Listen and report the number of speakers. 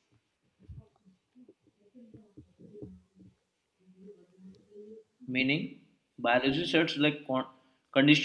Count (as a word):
one